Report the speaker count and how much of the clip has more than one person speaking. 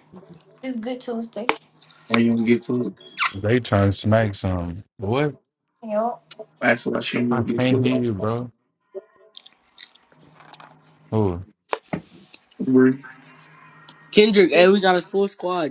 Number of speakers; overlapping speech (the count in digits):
4, about 5%